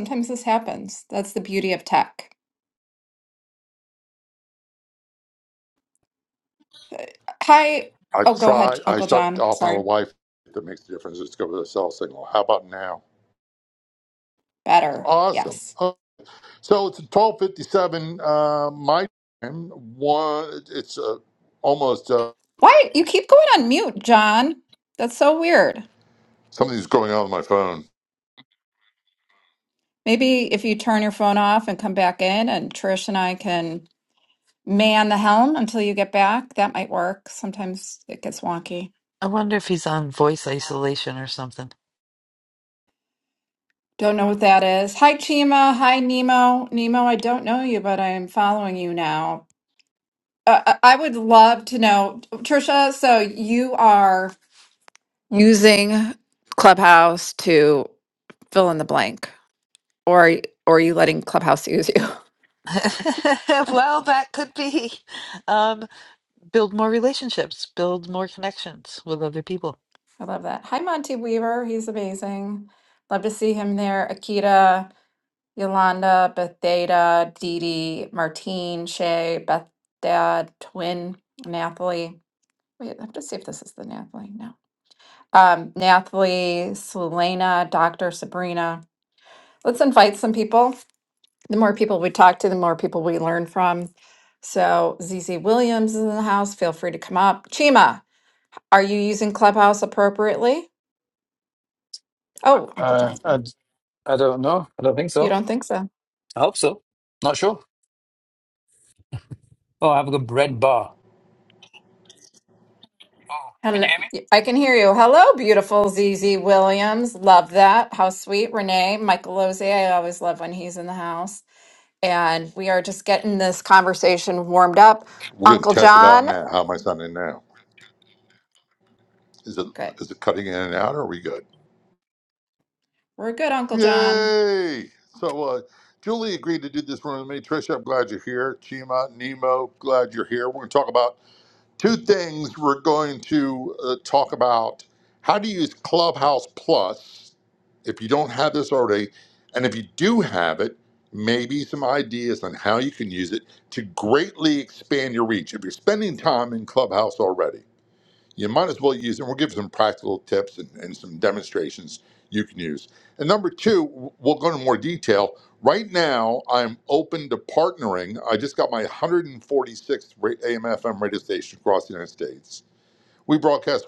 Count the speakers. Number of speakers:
4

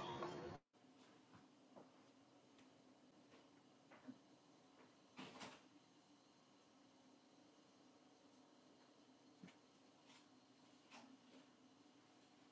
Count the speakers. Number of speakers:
0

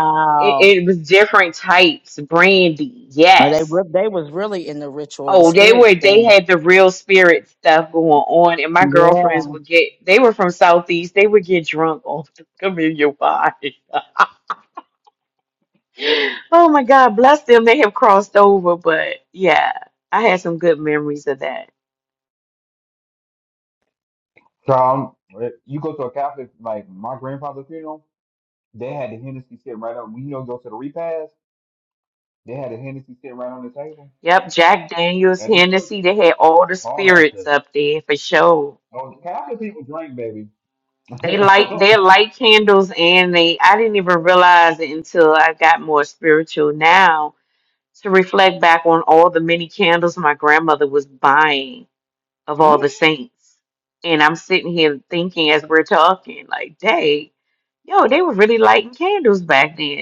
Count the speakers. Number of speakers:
3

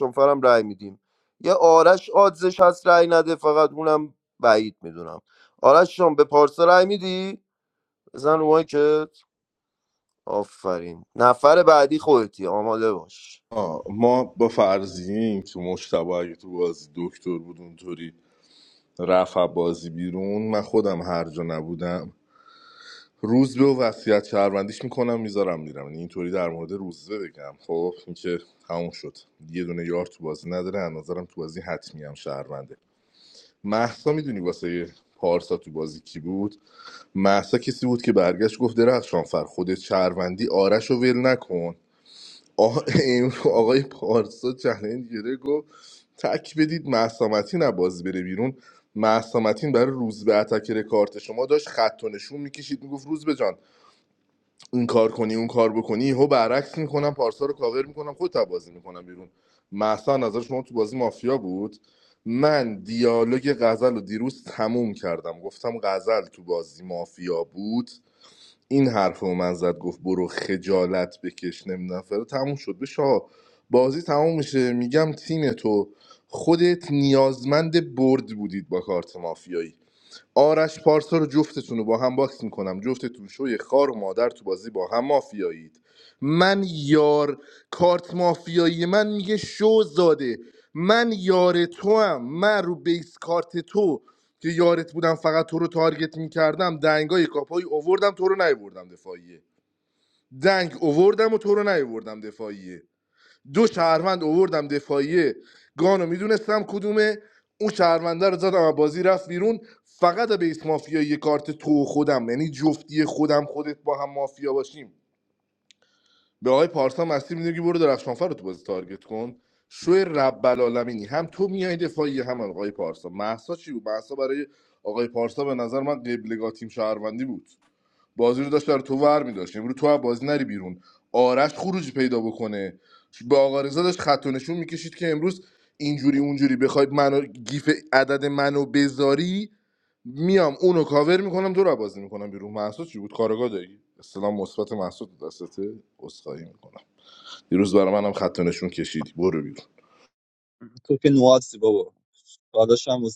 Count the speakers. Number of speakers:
3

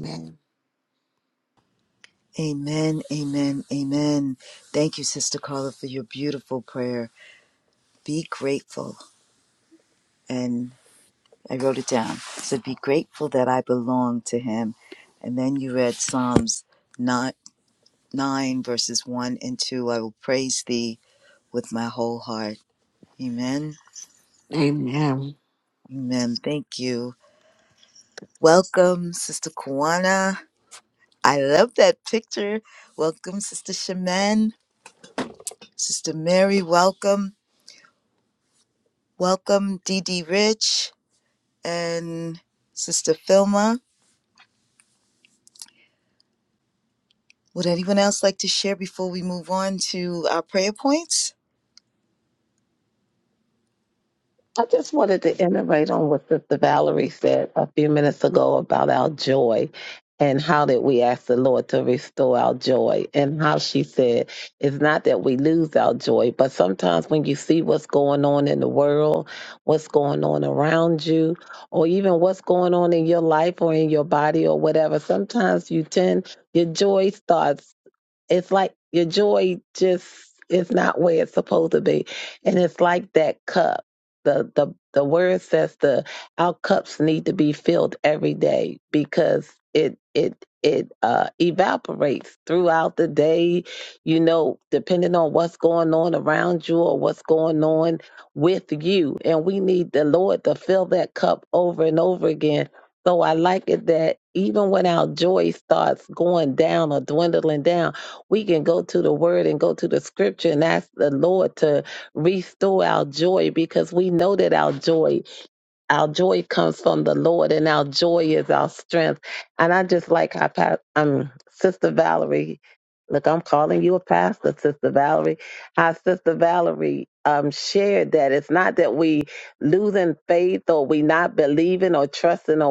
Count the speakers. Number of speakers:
3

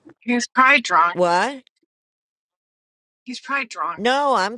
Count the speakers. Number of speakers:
2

